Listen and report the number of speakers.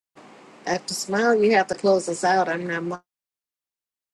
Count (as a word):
one